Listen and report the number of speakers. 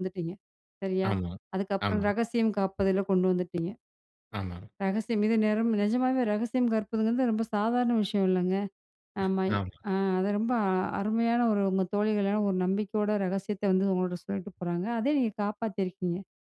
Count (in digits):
2